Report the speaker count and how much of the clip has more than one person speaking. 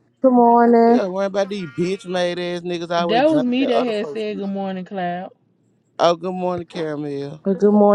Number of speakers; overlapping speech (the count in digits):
3, about 20%